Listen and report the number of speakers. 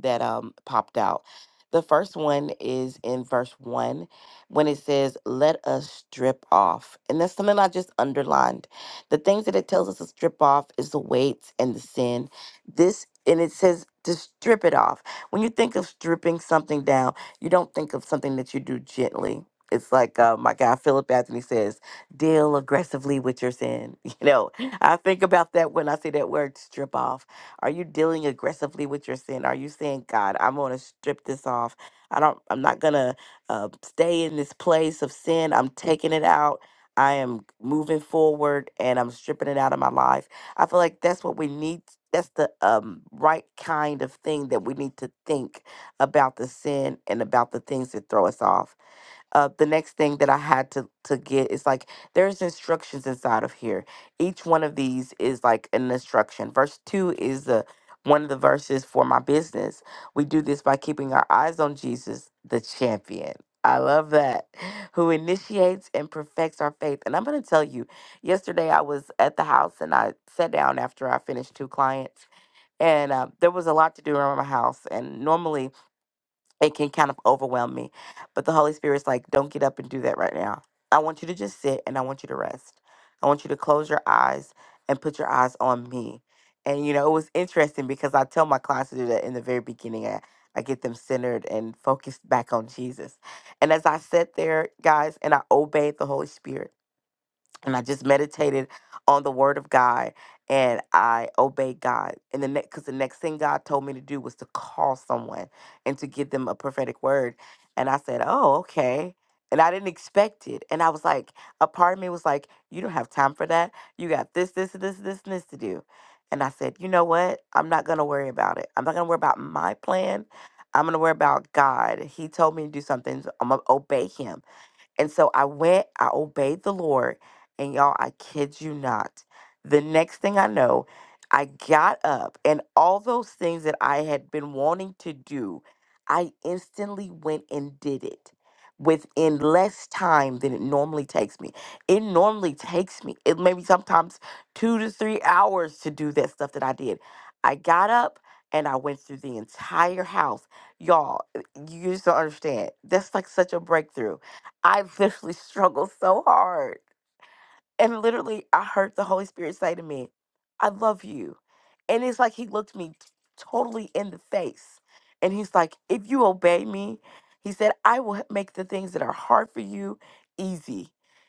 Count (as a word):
one